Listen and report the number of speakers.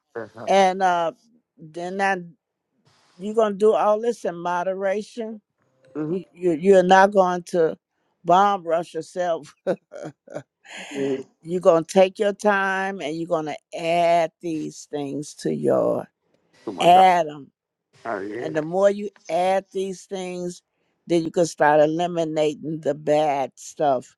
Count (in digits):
2